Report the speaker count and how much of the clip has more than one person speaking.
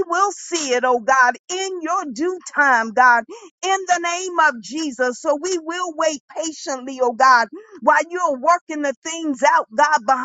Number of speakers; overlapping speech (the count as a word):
one, no overlap